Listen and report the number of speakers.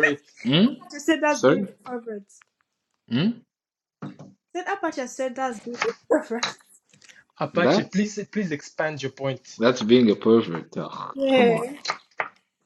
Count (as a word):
three